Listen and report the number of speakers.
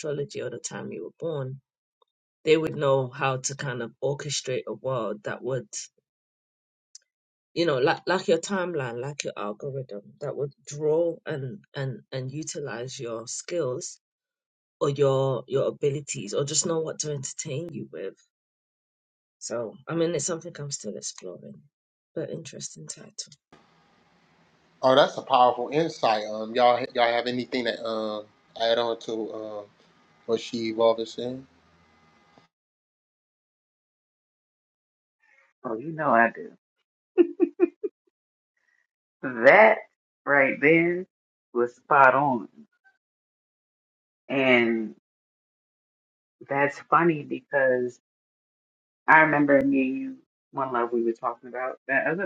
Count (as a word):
three